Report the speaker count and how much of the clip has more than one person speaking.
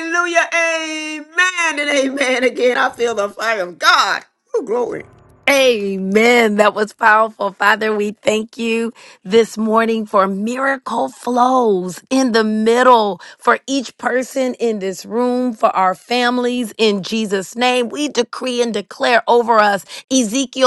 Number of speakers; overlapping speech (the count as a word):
two, no overlap